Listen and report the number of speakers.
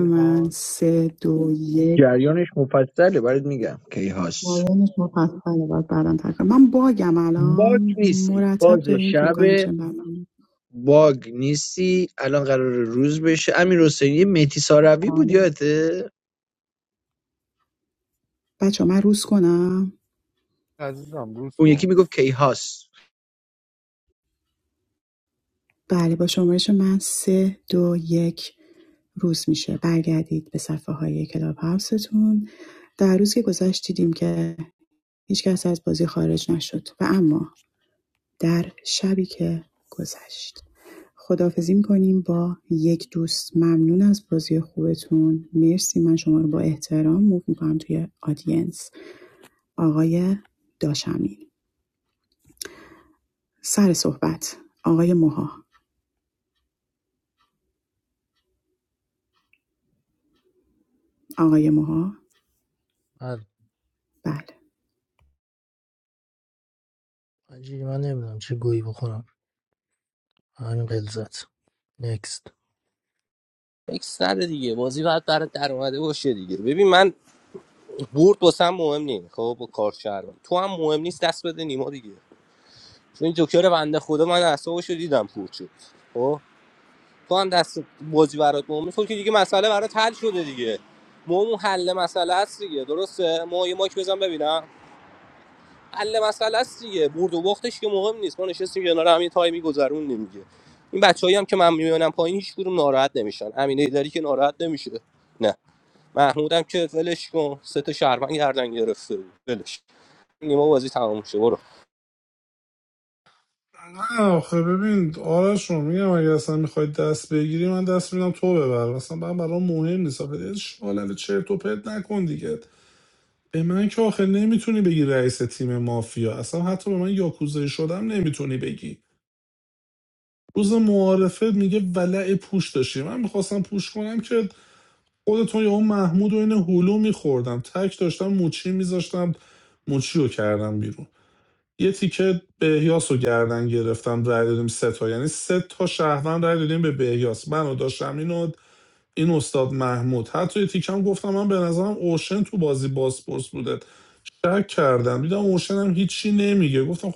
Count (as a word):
six